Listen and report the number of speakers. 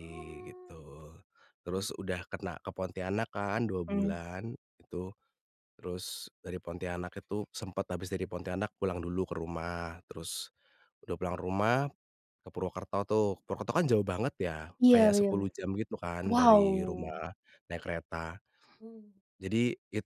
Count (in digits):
2